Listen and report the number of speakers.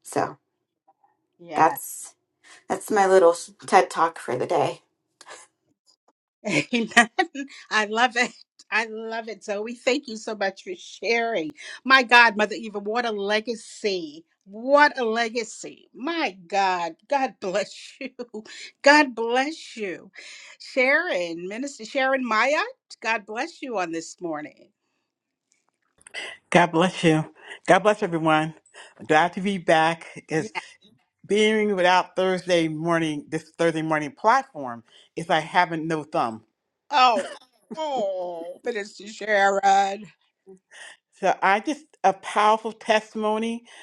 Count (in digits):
3